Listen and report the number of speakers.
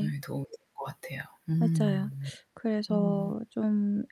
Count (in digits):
2